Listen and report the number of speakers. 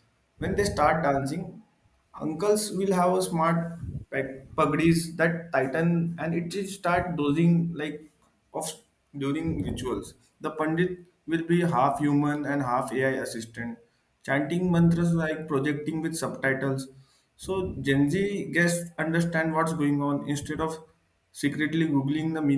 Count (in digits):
1